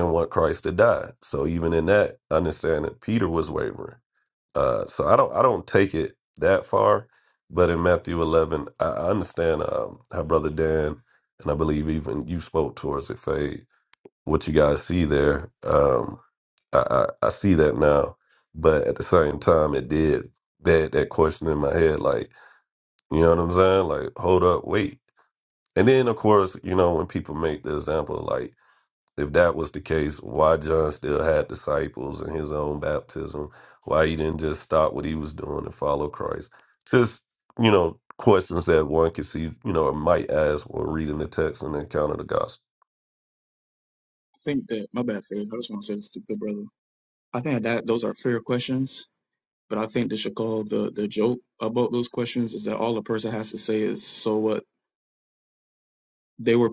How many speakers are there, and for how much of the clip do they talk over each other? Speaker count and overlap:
two, no overlap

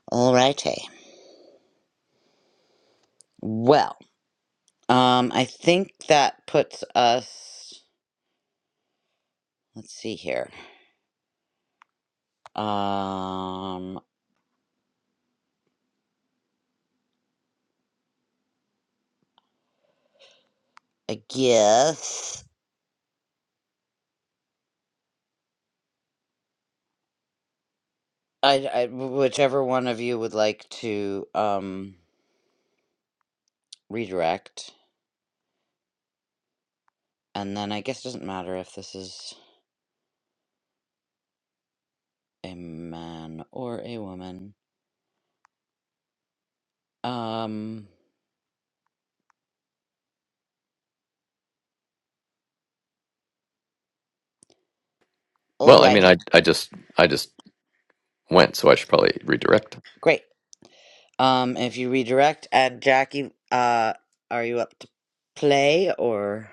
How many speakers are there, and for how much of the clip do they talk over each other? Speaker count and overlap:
two, about 1%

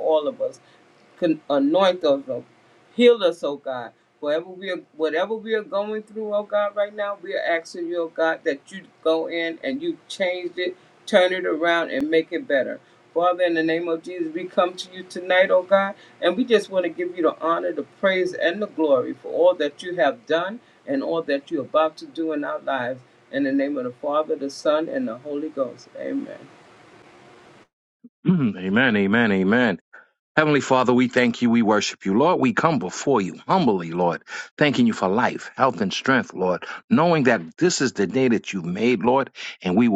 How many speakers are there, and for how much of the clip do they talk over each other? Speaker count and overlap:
two, no overlap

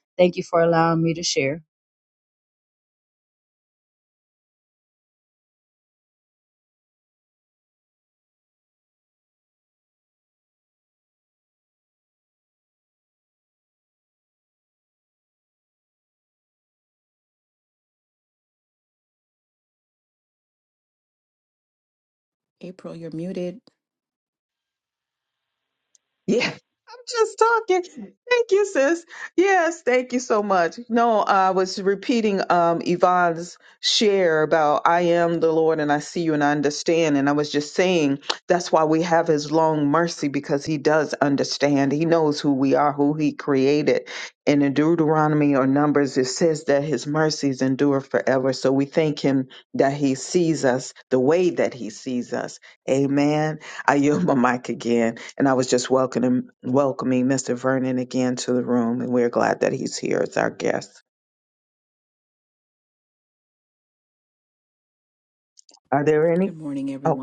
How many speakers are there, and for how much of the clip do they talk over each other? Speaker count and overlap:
three, under 1%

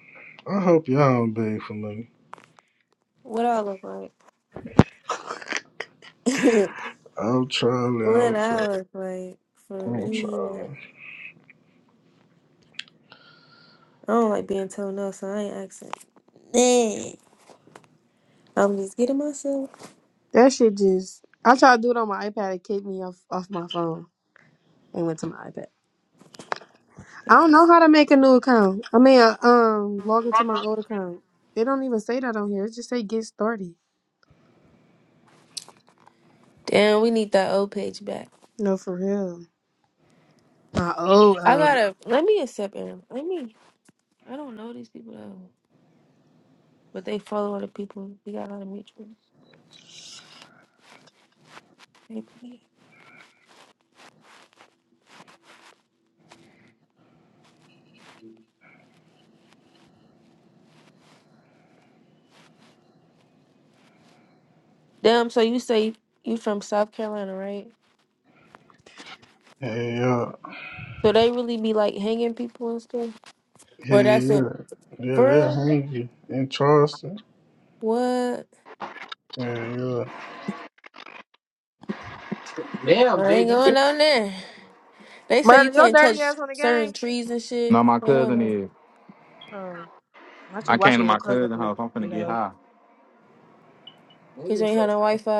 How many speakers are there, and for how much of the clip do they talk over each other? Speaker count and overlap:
four, about 6%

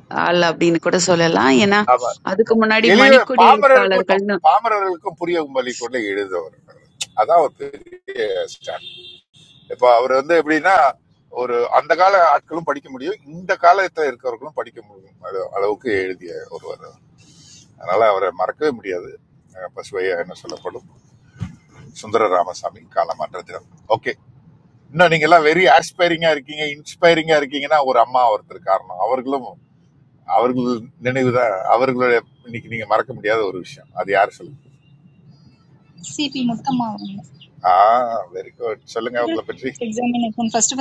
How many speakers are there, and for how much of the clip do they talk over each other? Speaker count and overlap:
three, about 4%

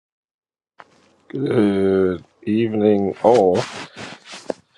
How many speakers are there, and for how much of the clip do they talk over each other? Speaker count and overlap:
one, no overlap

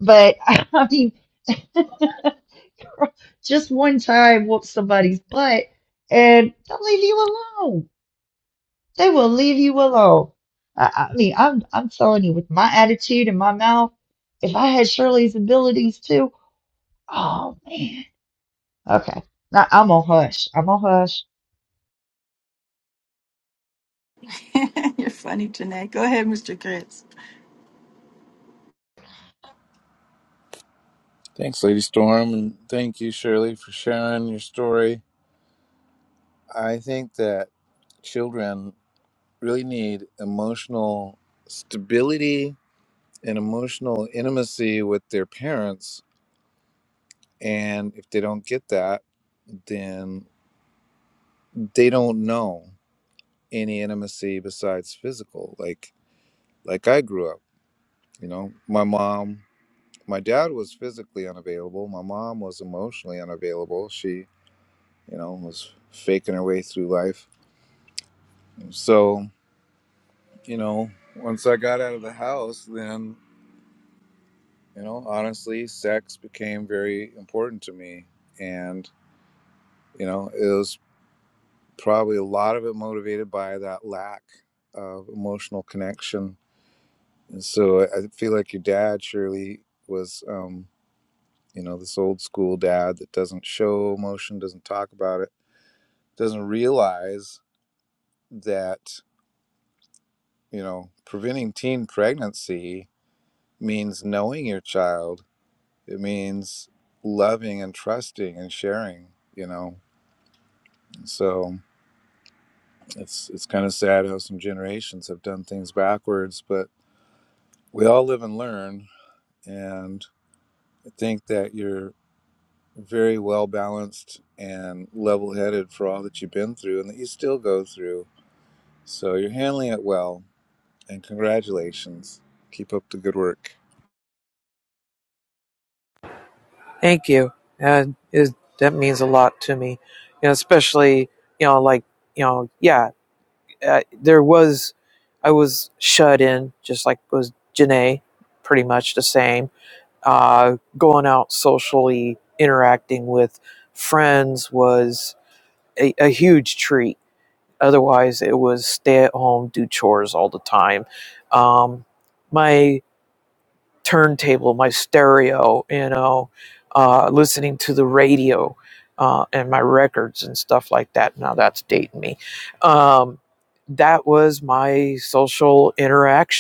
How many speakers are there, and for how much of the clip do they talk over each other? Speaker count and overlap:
four, no overlap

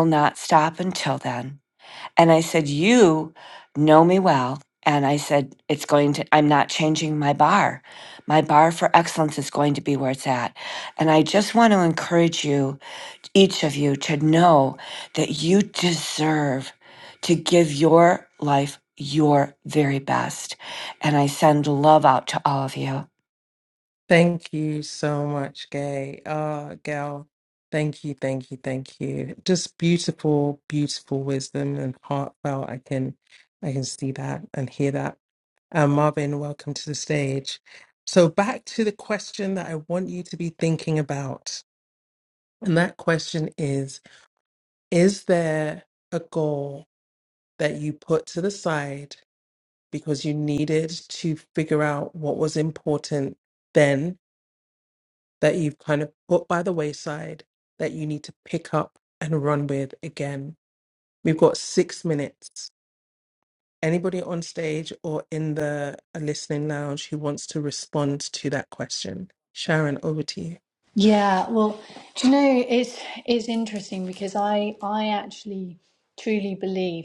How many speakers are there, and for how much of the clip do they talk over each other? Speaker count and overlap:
three, no overlap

